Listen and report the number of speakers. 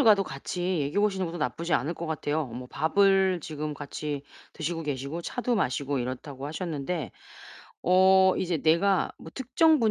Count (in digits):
1